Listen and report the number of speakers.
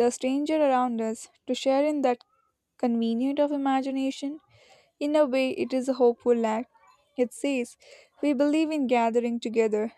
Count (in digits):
1